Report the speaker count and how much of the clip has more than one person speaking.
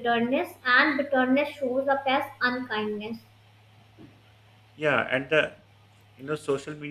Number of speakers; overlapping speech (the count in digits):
2, no overlap